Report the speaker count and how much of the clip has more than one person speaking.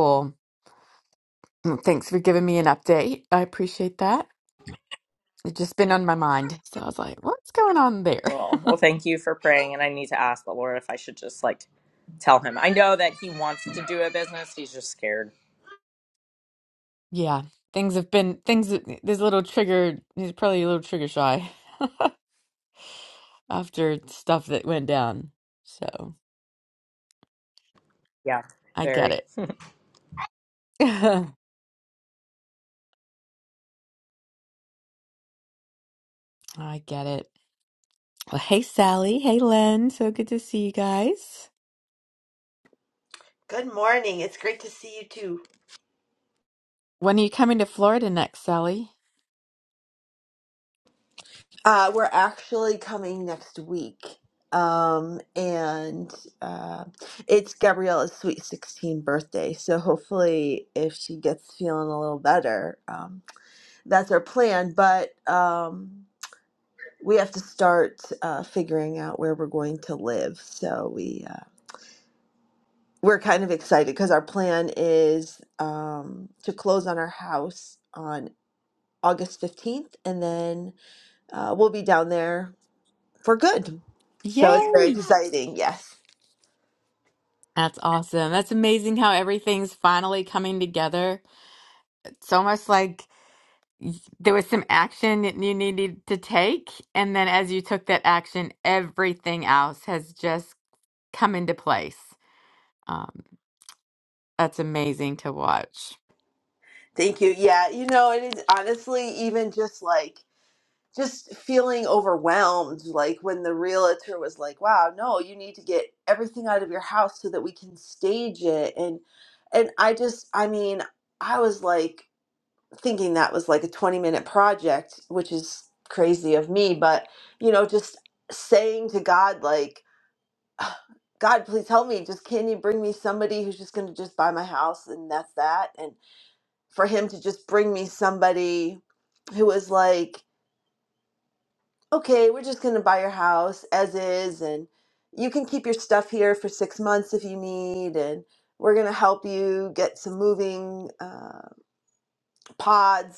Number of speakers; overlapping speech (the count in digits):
3, about 1%